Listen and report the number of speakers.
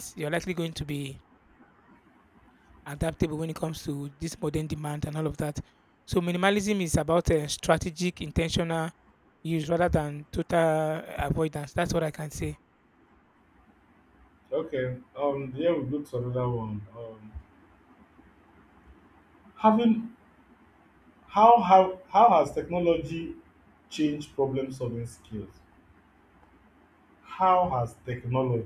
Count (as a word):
two